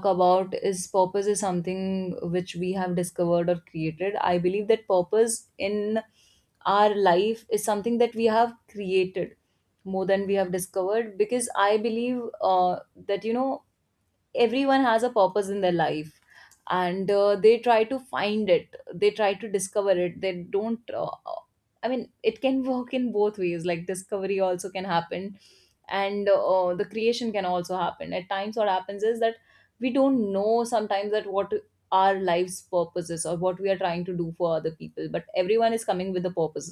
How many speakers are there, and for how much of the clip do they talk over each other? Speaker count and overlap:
one, no overlap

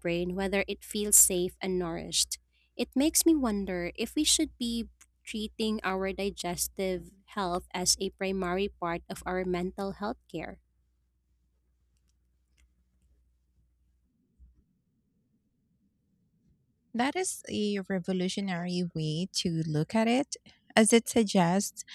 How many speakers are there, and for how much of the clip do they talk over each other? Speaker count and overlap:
two, no overlap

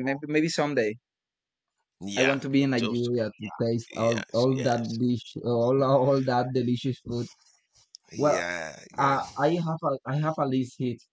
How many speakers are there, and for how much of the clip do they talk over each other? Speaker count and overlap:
two, about 19%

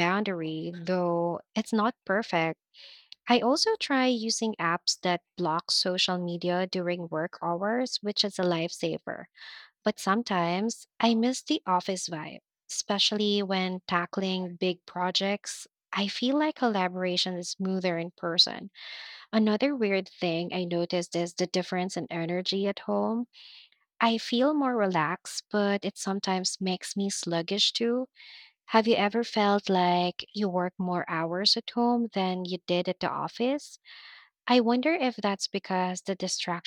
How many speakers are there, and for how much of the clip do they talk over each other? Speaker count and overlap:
one, no overlap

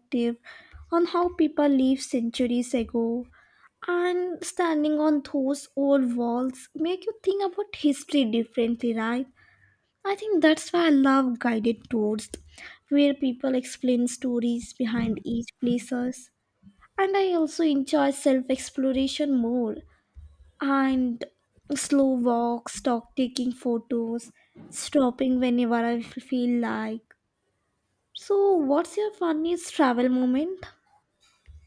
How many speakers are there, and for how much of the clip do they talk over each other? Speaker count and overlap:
one, no overlap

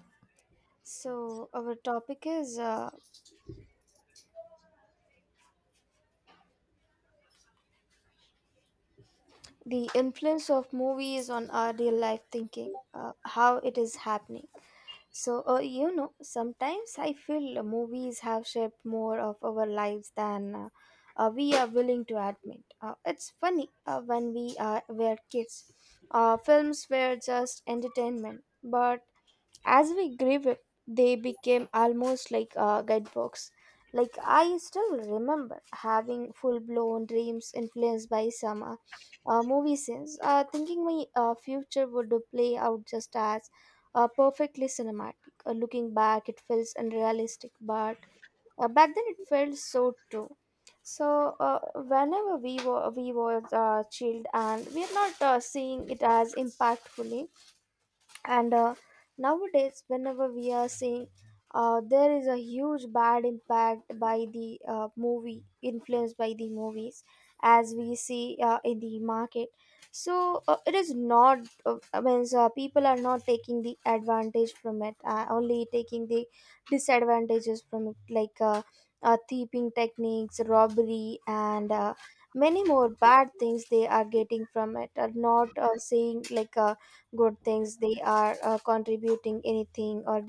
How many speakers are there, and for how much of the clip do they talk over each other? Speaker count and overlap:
one, no overlap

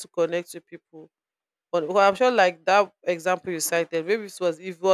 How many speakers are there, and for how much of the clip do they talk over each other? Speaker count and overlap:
one, no overlap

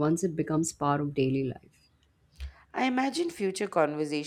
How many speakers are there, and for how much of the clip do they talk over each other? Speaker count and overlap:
two, no overlap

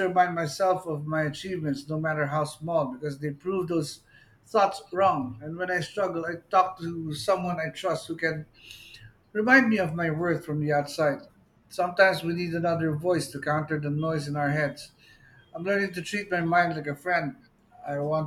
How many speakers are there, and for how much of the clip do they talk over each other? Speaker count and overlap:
one, no overlap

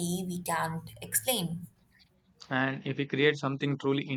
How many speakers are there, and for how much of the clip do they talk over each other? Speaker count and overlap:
two, no overlap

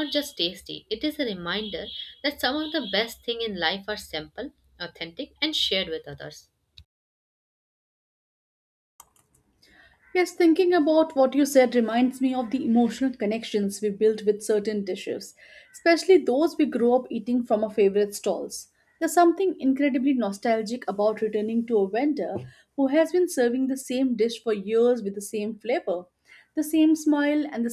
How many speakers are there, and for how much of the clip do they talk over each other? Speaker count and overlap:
two, no overlap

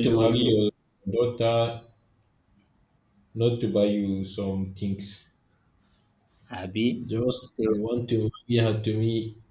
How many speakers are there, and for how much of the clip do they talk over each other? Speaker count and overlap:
two, about 7%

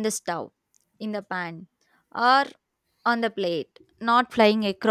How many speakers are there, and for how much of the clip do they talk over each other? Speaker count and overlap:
one, no overlap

